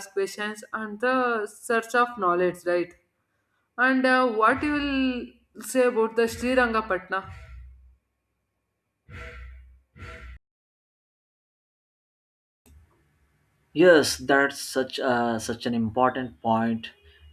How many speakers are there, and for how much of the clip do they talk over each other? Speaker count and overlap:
2, no overlap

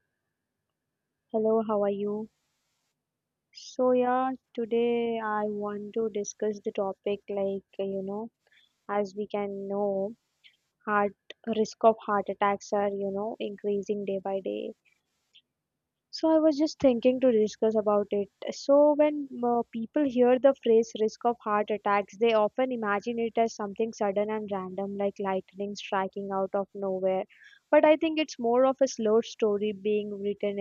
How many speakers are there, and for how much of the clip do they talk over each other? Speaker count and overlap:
1, no overlap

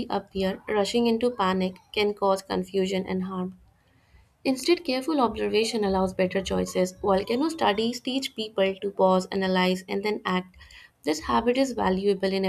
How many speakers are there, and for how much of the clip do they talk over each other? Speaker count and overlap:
1, no overlap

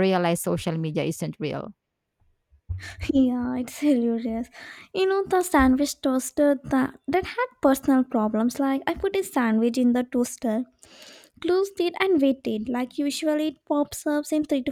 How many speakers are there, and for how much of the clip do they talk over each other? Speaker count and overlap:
2, no overlap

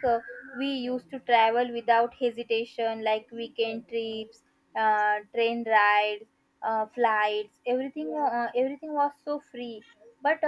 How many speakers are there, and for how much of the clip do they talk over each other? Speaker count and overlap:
1, no overlap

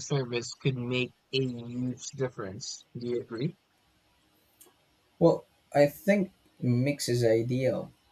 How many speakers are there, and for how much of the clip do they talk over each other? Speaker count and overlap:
2, no overlap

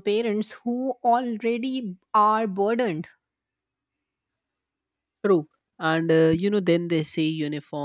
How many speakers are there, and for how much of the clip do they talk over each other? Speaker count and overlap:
2, no overlap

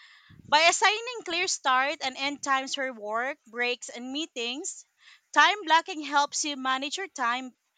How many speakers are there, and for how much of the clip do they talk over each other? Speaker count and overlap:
1, no overlap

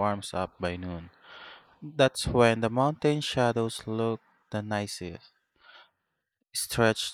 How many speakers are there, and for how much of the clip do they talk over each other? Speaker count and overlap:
1, no overlap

